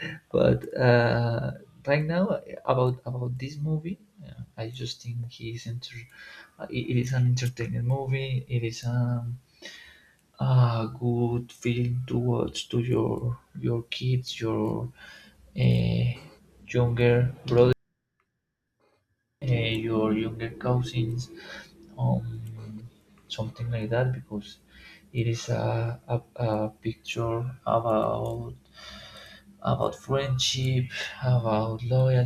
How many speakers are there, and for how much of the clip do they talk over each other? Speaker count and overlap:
1, no overlap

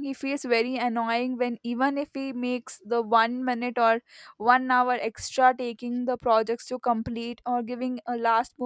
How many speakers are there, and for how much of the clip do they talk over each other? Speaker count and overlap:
1, no overlap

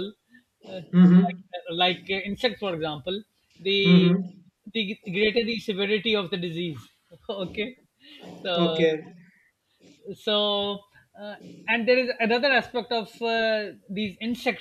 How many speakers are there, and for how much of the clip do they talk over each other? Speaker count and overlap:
2, about 6%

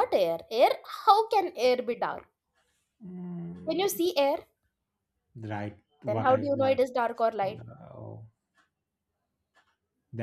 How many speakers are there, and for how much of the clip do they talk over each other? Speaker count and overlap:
2, about 9%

